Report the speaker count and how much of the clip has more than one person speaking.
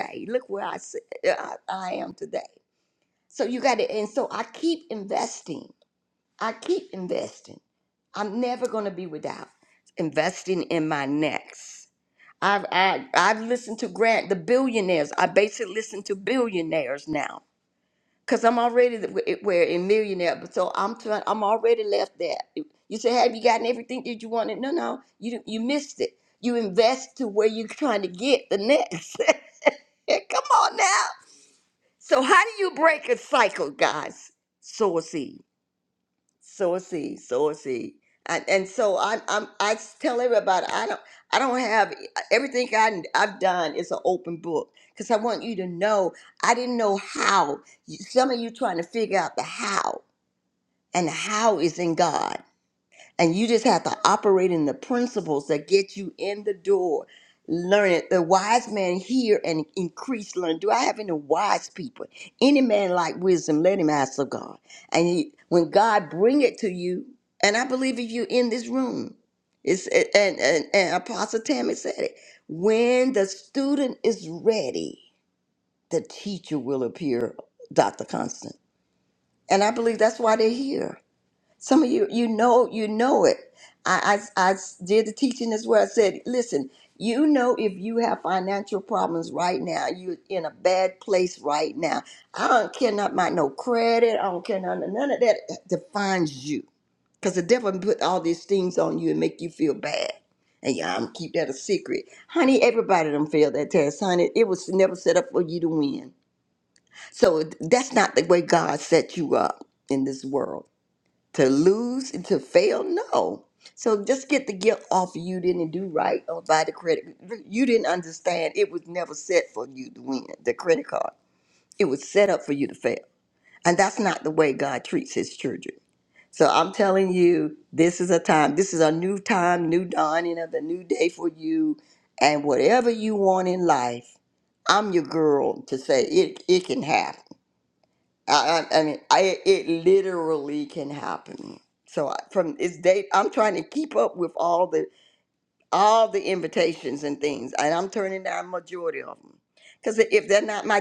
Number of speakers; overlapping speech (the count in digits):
1, no overlap